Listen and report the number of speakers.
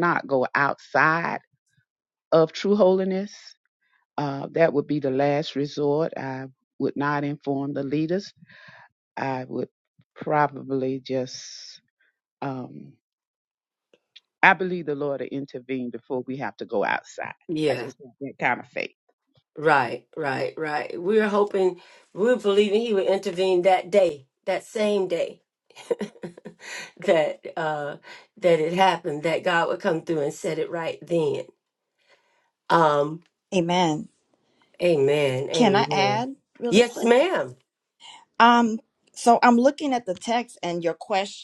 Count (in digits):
3